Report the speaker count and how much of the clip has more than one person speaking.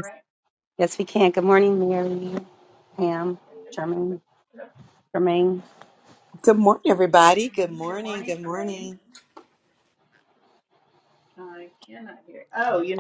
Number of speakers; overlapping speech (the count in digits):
3, about 11%